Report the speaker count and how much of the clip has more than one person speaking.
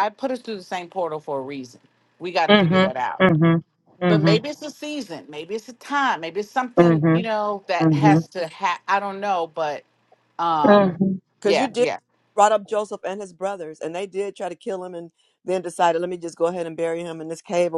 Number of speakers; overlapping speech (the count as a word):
three, about 15%